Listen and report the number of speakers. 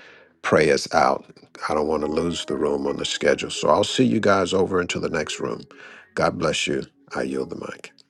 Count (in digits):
1